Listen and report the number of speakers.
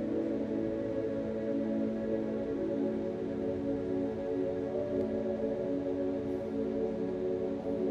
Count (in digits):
0